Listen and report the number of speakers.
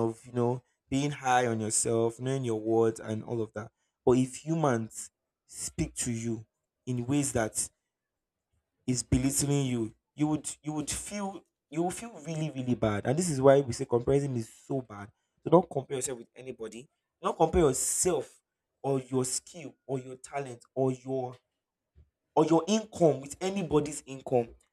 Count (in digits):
1